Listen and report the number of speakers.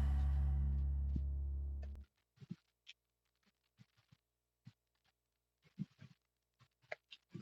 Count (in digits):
0